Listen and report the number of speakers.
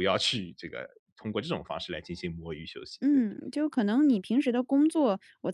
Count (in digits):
2